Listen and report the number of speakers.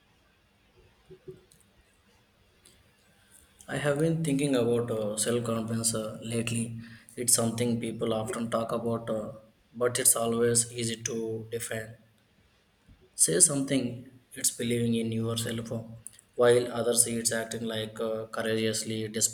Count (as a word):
one